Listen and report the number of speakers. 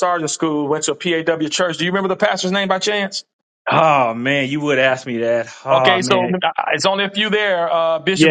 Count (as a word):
two